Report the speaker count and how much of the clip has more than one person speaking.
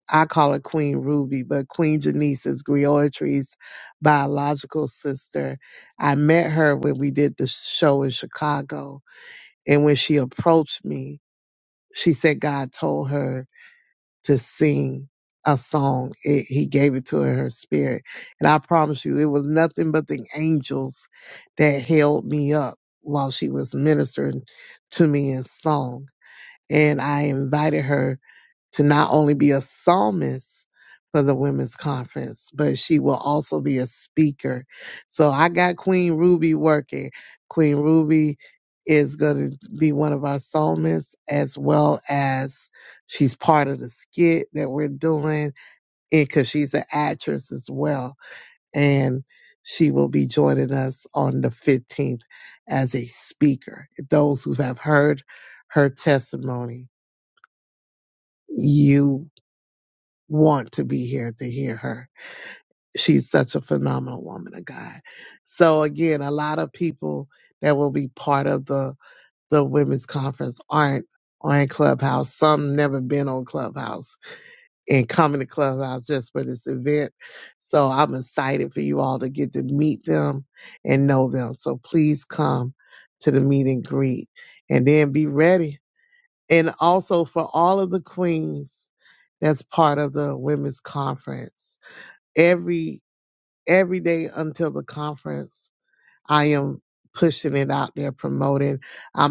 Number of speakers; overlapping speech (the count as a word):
one, no overlap